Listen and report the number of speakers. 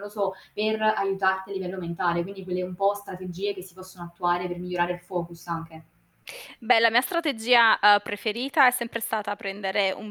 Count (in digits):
2